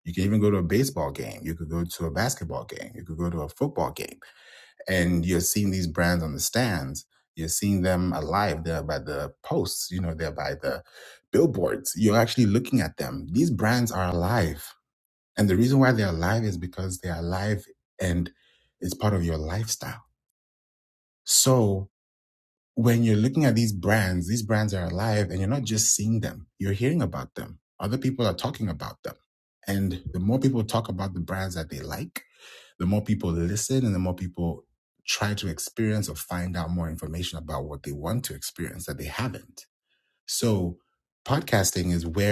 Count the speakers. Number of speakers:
1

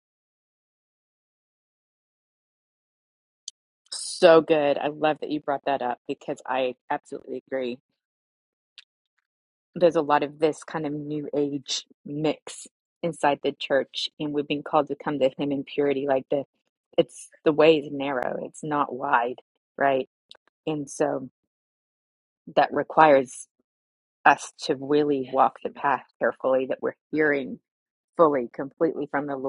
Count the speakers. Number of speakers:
1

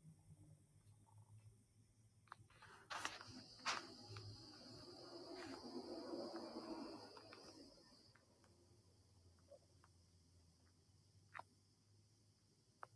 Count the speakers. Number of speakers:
0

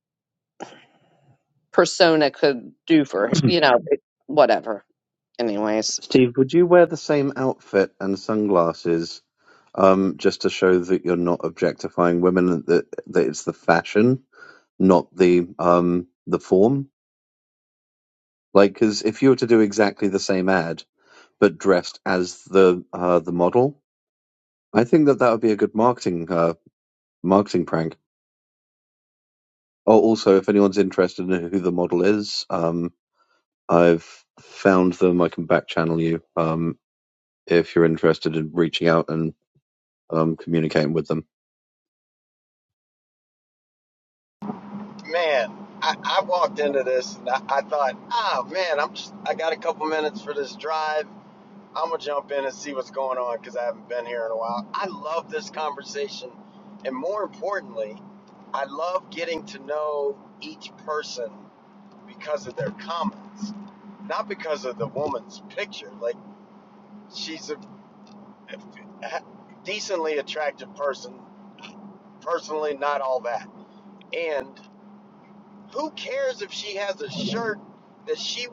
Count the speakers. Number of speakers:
3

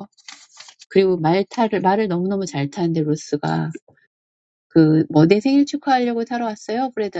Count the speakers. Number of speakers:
1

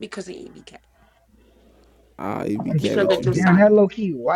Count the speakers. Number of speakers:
3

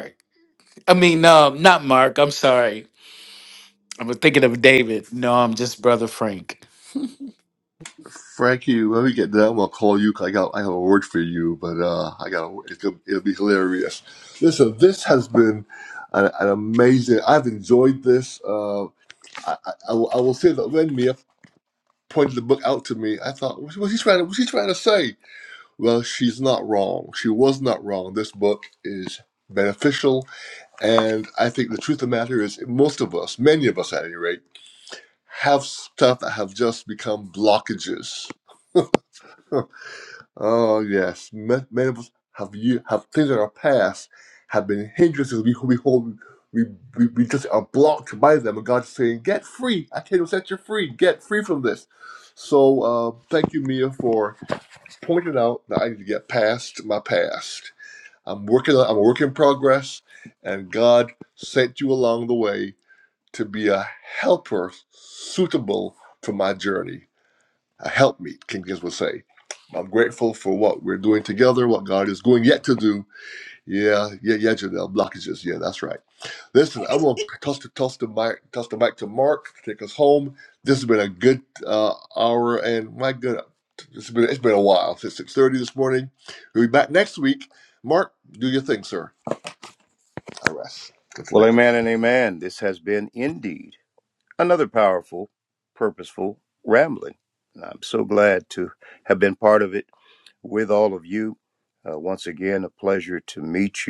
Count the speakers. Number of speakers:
3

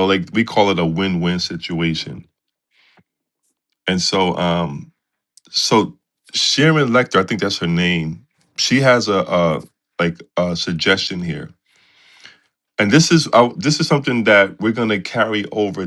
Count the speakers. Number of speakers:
1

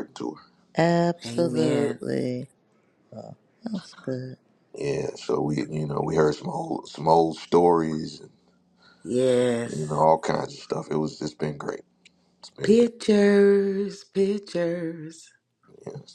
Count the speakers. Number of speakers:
3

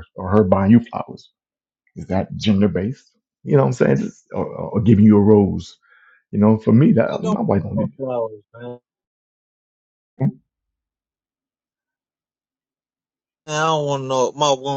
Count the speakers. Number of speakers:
2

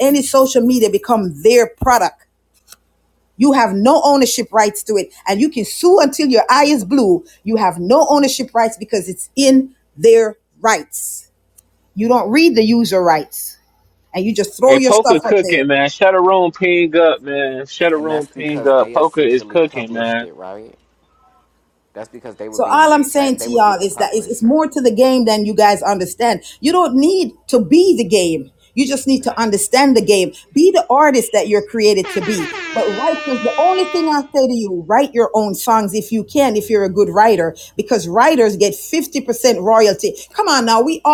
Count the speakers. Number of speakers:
3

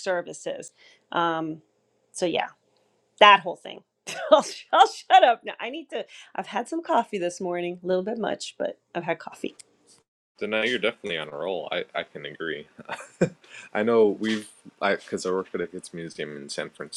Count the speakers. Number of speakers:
2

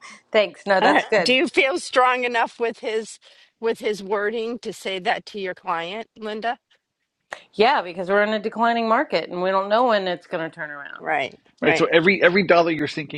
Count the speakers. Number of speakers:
3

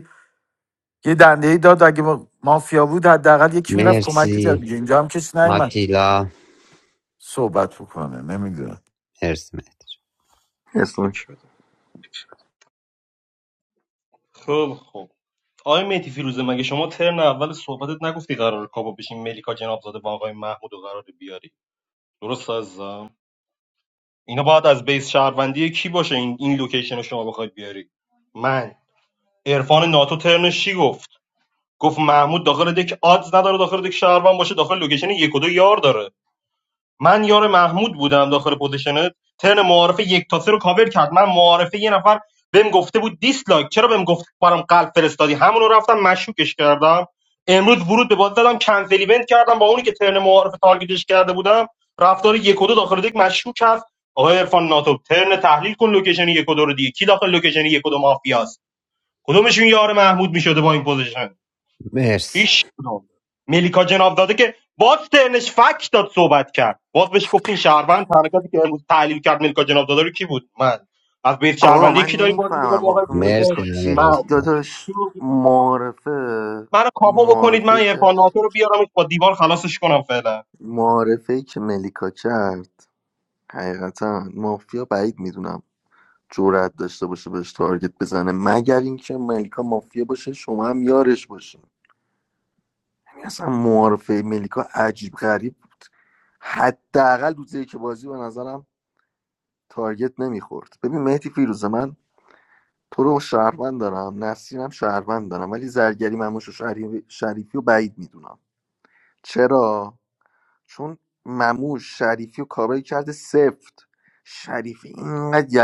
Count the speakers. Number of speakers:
4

